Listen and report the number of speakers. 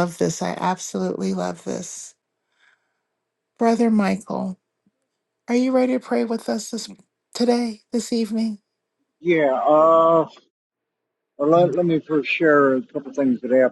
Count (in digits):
2